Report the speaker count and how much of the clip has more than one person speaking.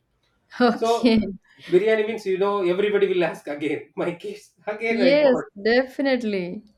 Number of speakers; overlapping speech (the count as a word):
two, about 14%